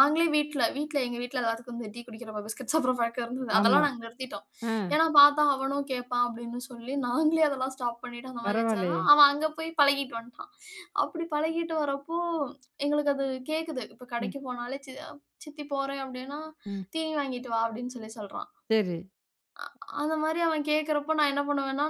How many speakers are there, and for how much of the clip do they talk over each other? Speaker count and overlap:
two, about 5%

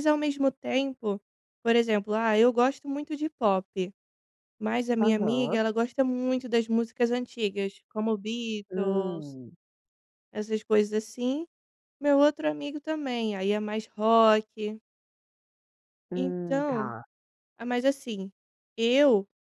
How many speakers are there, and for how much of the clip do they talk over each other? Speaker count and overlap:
two, about 9%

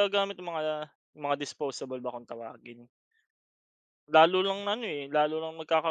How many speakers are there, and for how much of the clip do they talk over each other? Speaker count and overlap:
one, no overlap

